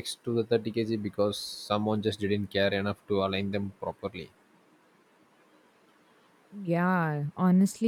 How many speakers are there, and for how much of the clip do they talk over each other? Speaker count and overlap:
two, no overlap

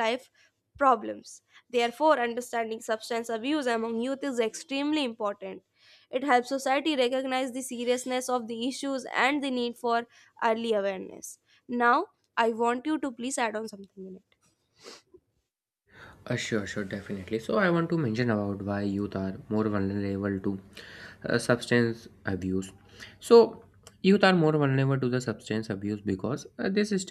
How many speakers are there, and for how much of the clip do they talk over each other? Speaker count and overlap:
two, no overlap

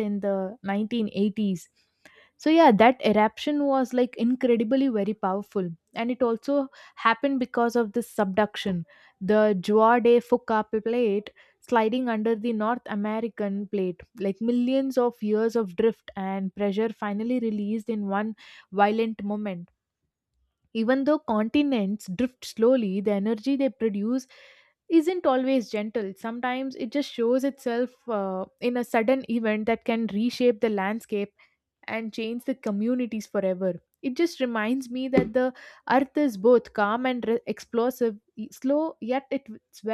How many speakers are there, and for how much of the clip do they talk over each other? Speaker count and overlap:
one, no overlap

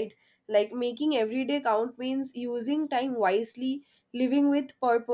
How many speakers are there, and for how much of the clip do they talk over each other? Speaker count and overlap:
one, no overlap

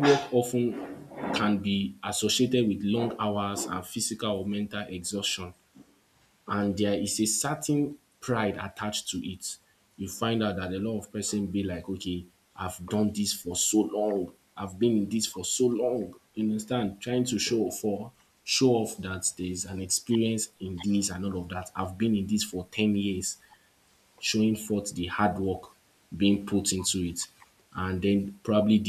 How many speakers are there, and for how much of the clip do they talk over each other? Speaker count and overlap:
one, no overlap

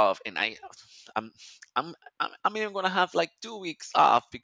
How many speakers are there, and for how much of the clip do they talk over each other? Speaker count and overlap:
one, no overlap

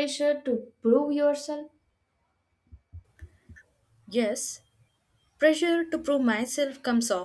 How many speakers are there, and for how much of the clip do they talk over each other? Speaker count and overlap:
two, no overlap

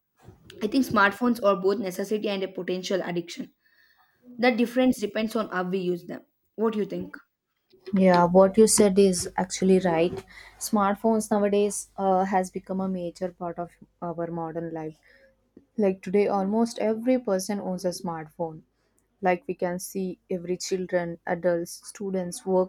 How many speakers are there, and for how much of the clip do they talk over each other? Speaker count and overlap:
two, no overlap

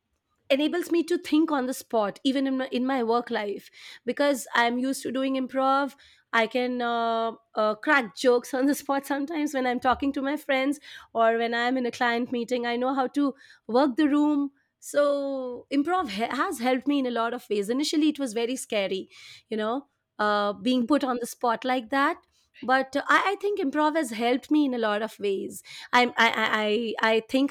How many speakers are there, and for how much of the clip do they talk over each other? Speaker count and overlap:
one, no overlap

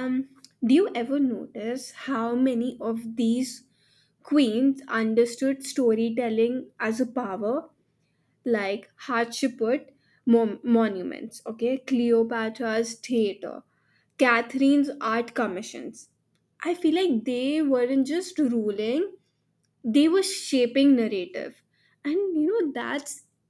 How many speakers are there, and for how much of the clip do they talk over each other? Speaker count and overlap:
one, no overlap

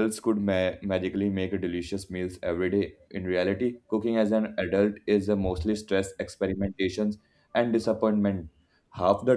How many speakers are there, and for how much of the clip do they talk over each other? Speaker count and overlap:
one, no overlap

